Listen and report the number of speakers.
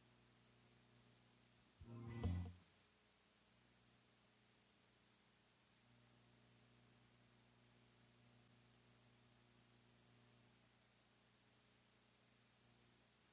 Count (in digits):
0